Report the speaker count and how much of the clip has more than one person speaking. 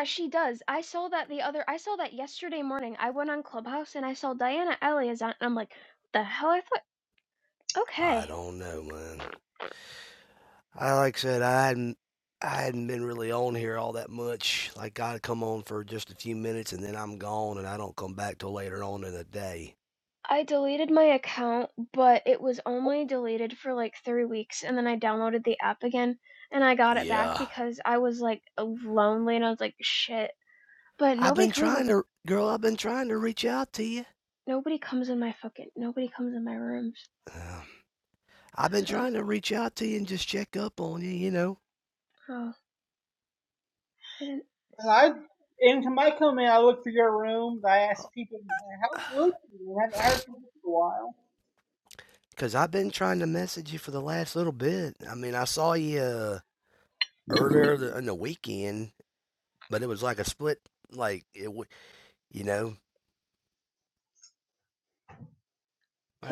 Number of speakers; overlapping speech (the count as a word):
three, about 3%